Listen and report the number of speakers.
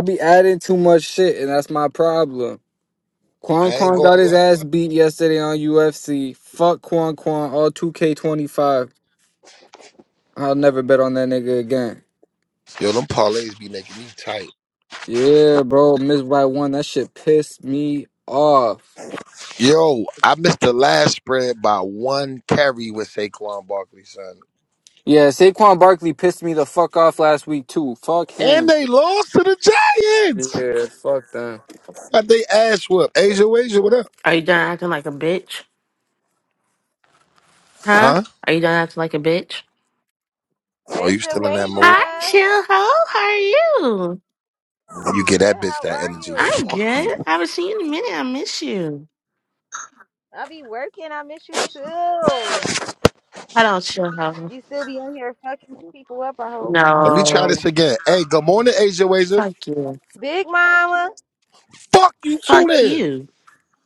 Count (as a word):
four